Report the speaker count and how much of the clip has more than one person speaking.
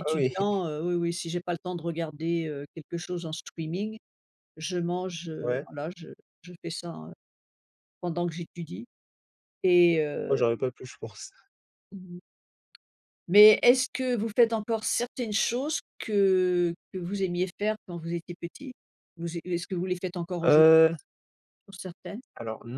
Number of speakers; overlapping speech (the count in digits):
2, about 4%